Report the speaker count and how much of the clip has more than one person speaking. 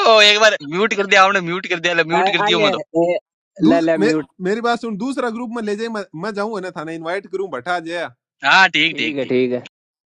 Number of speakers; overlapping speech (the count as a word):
three, about 16%